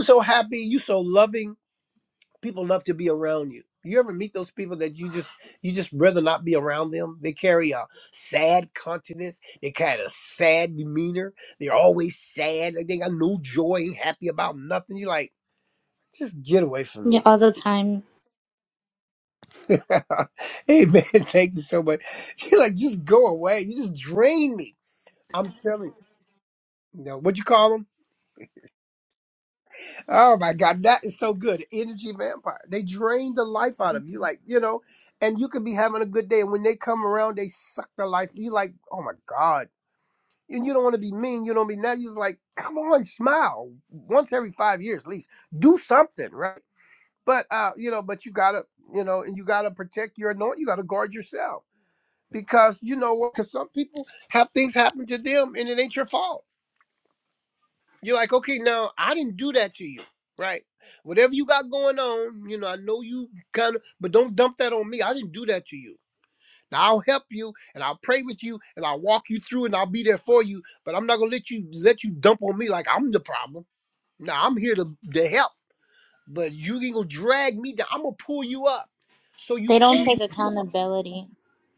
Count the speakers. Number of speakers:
2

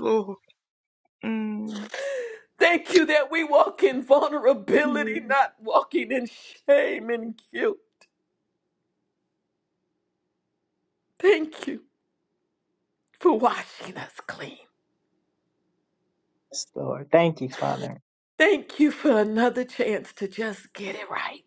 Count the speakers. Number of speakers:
3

